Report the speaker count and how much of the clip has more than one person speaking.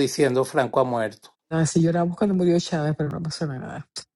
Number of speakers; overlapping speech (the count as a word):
two, no overlap